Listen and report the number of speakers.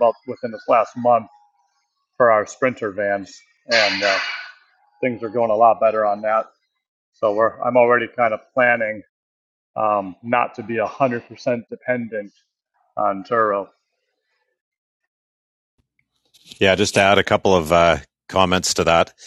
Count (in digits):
2